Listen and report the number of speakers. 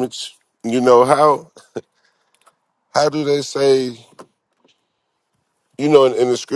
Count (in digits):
1